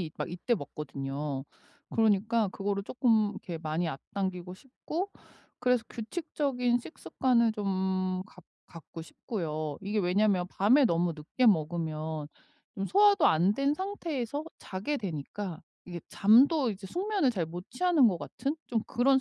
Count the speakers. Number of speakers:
1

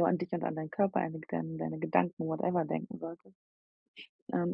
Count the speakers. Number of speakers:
1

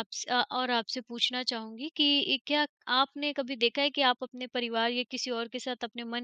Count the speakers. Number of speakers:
1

